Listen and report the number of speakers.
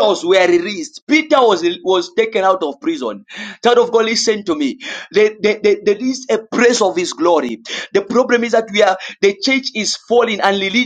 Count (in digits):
1